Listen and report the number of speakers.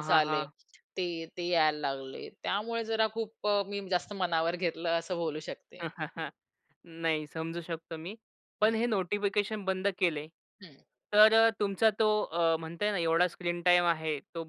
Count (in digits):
2